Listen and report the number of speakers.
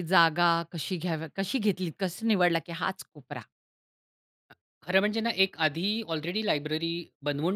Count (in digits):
2